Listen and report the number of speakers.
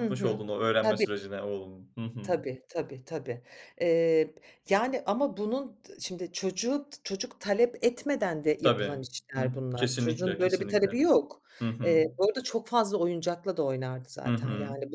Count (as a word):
two